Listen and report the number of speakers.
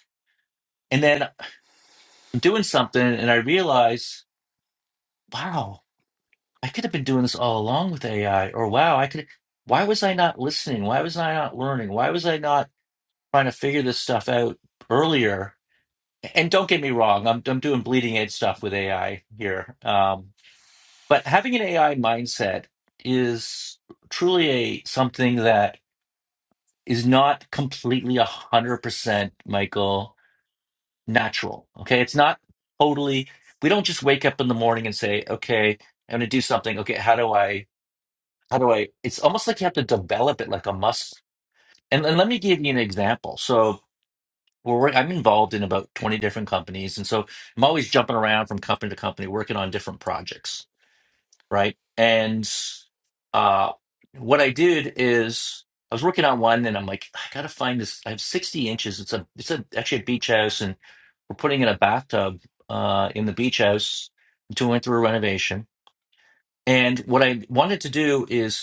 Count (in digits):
1